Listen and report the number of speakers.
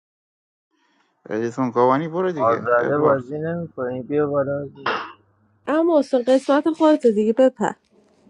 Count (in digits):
3